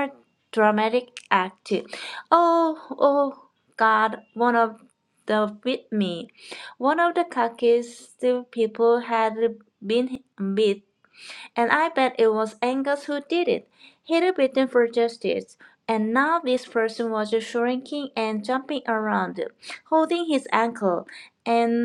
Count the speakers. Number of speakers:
one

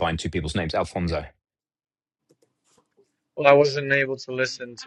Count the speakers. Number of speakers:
two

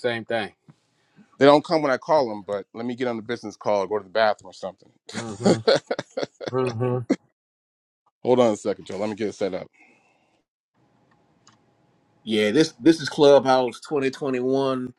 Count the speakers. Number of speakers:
three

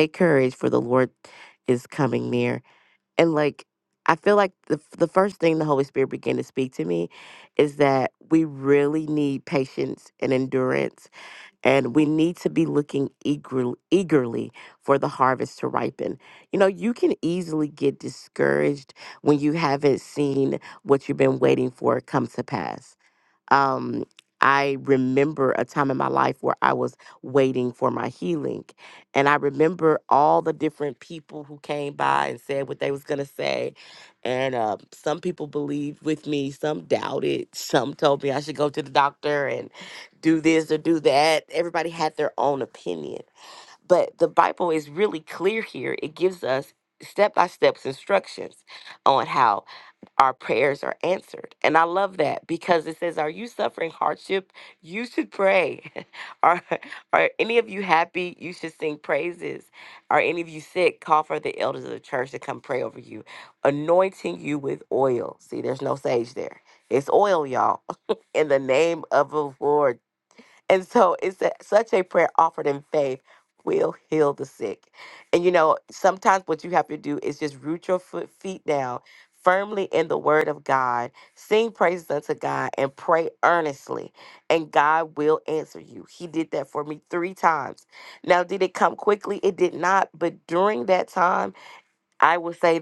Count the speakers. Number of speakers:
one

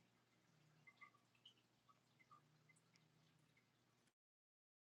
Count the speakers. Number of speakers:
zero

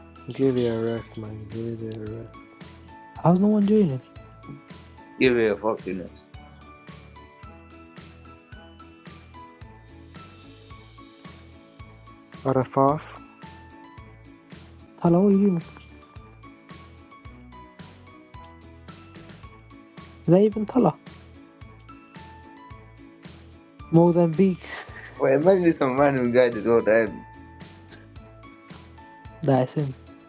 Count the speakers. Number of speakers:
three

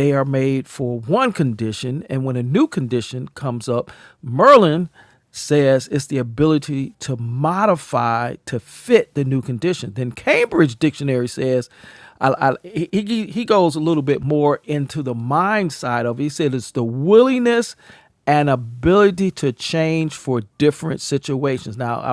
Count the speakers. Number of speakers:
one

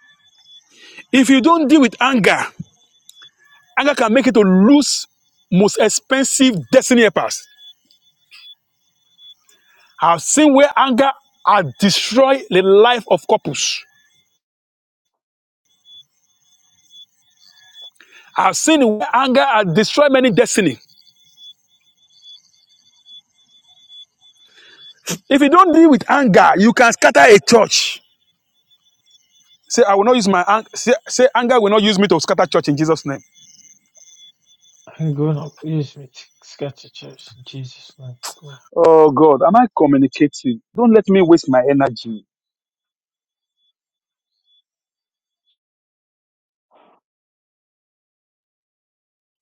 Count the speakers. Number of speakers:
two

